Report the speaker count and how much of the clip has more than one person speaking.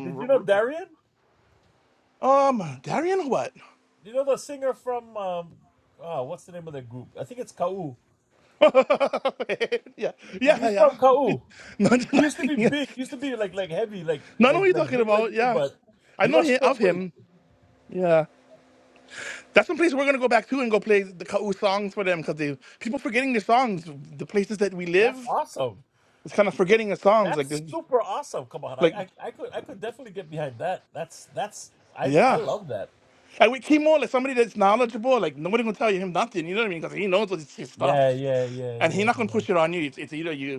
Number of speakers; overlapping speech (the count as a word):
two, about 13%